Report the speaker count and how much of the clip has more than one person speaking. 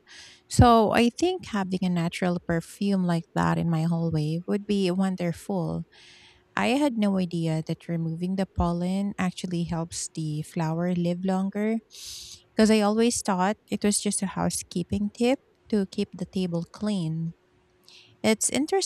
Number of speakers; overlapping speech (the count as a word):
one, no overlap